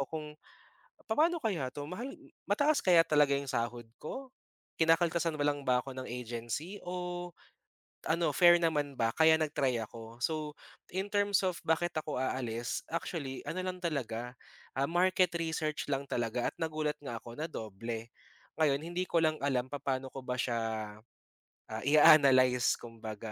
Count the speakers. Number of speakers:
1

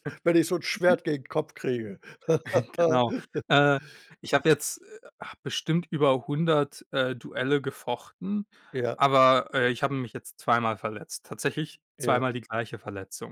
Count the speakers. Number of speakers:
2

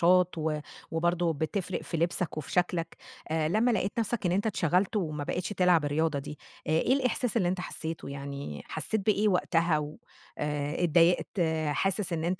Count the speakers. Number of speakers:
1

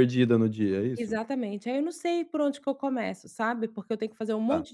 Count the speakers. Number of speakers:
2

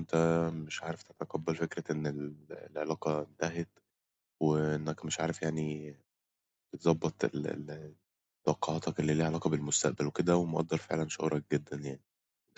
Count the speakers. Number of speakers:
1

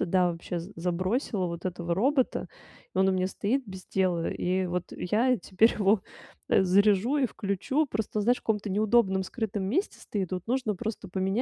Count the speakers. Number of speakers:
1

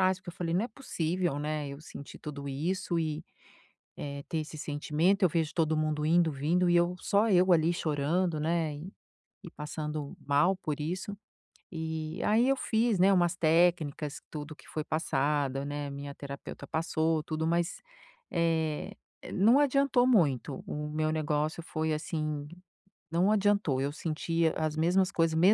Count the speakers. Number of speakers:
1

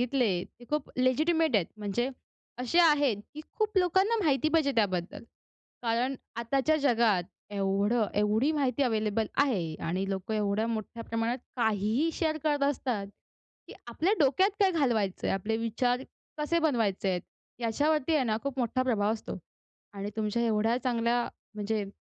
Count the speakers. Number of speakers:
1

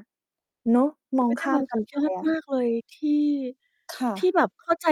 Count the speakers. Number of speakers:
2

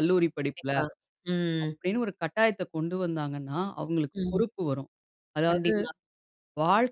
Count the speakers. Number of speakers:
2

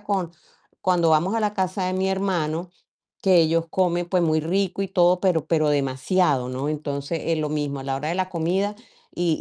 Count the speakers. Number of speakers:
1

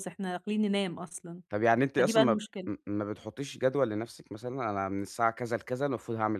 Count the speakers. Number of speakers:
2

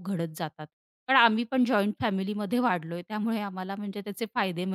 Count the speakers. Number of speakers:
1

